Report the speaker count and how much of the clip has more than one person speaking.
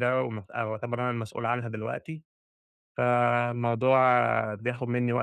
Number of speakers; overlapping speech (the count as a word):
one, no overlap